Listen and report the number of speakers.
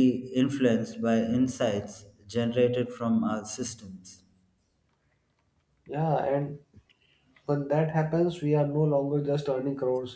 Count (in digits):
2